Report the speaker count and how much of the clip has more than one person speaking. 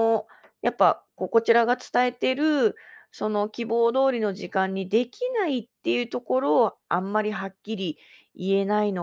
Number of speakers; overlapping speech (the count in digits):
1, no overlap